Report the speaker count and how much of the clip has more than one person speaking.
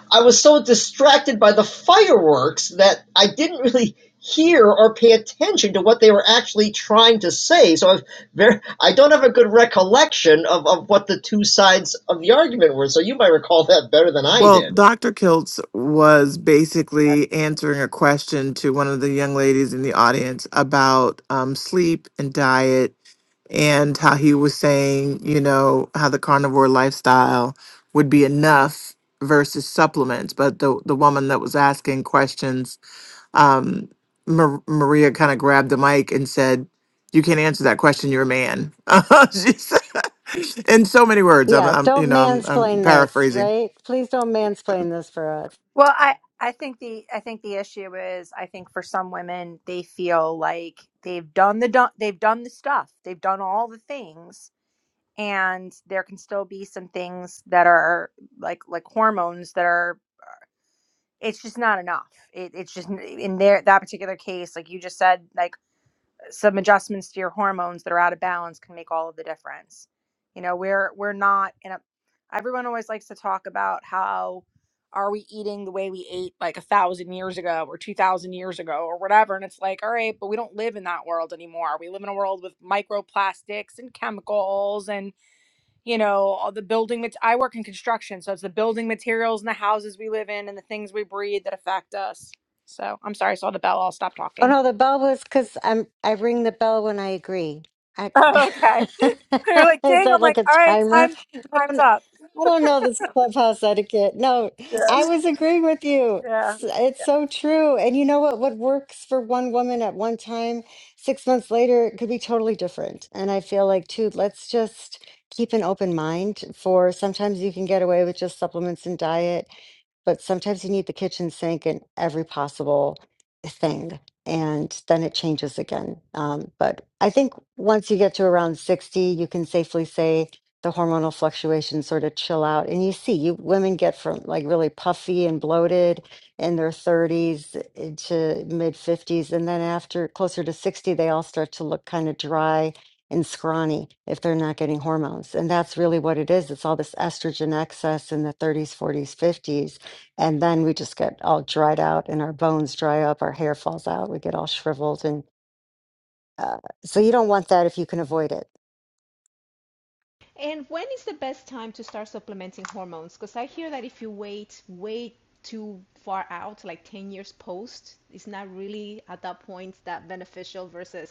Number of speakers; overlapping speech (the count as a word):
five, about 2%